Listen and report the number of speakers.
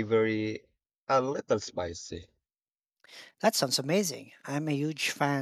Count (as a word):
two